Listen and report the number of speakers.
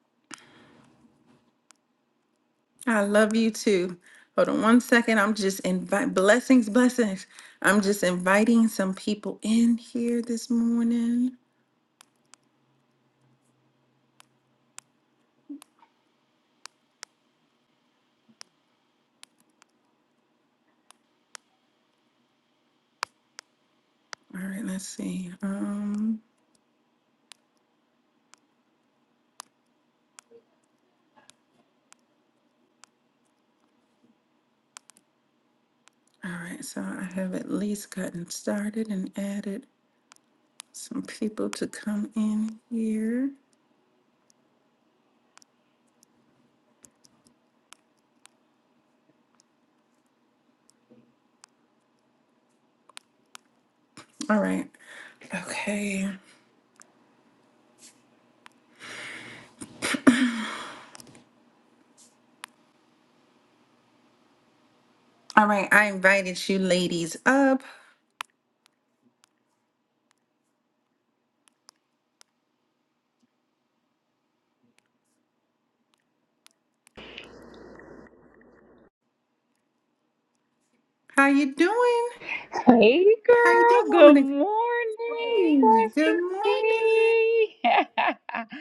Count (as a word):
two